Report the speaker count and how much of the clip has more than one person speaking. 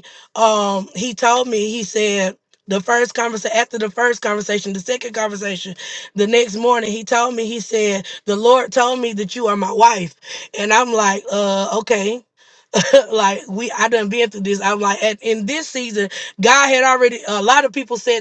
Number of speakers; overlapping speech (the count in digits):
1, no overlap